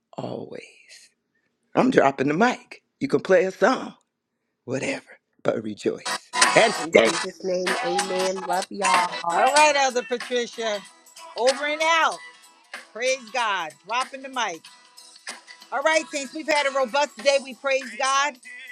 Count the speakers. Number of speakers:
3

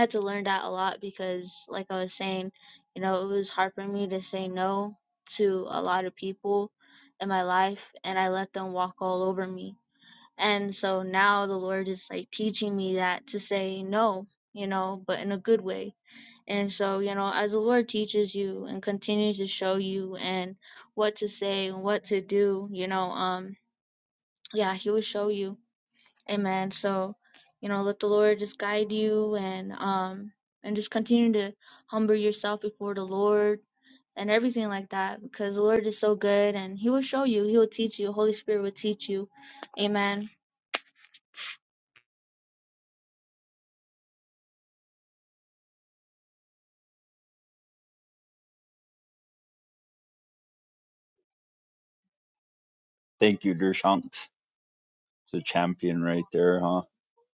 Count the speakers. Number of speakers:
2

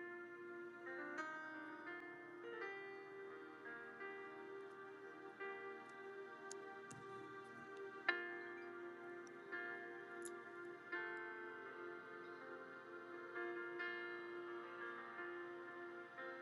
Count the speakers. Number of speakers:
0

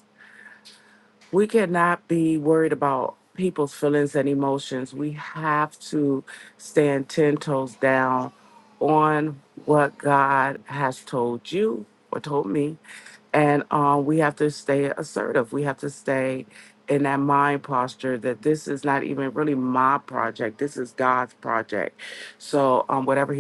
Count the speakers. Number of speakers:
1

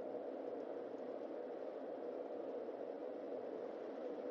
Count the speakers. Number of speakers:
0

